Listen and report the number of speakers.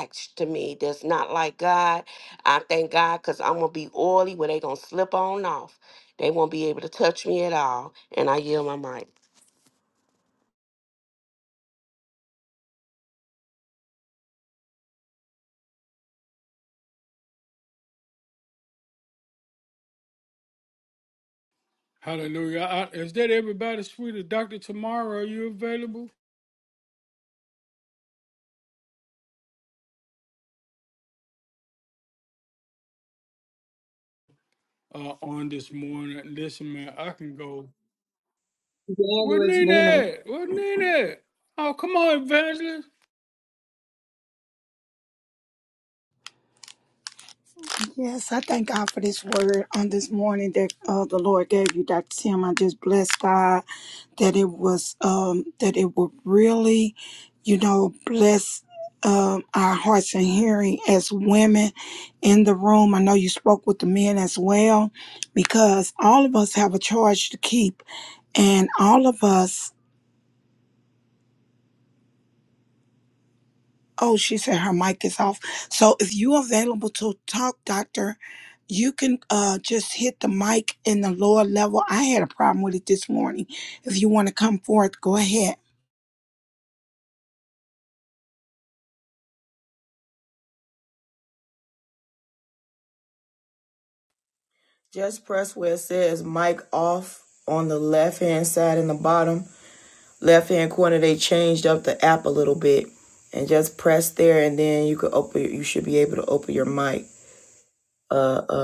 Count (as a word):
four